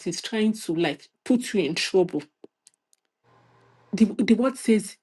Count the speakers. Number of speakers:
1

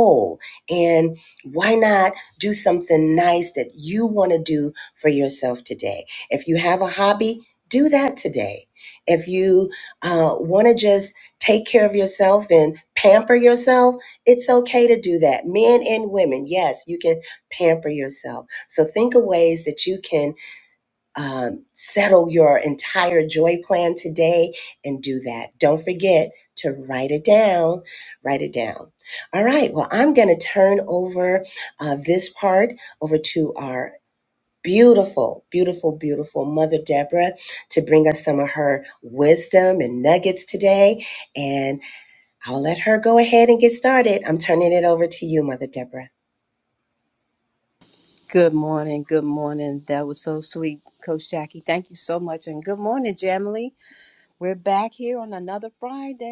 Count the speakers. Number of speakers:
2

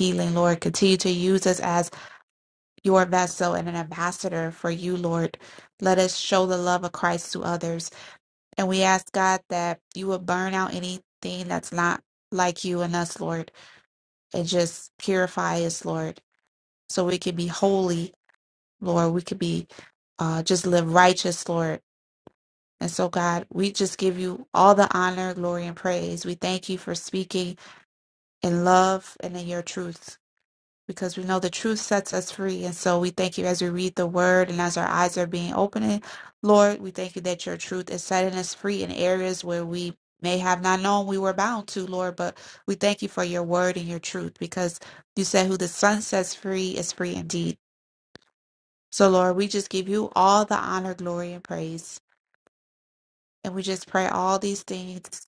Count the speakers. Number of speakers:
1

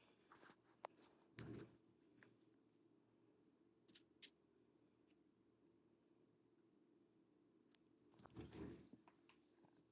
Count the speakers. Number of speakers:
0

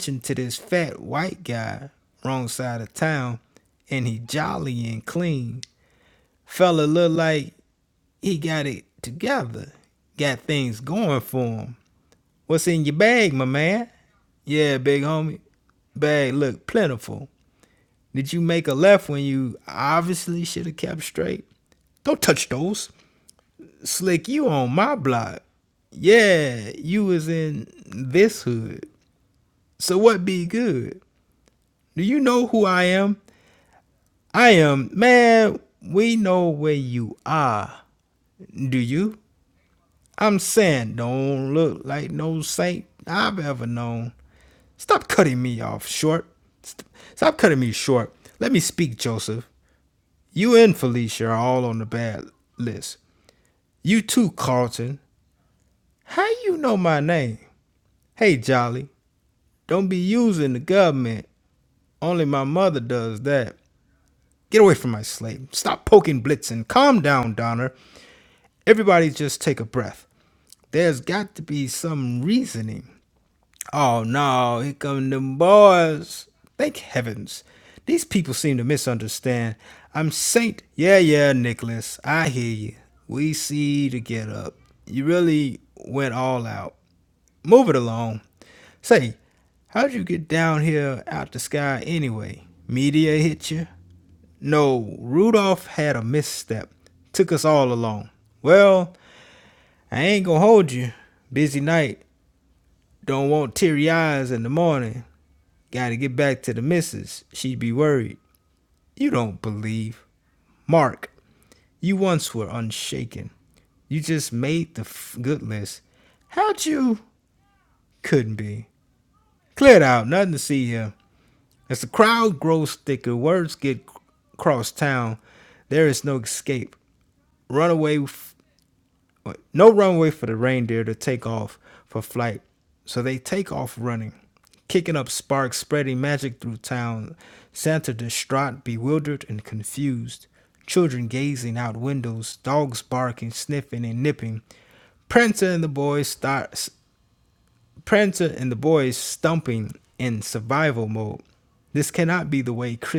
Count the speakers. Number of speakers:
1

